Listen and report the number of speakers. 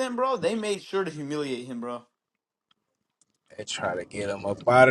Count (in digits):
2